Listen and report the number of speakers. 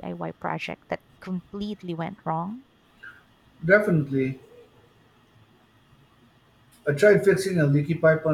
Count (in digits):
2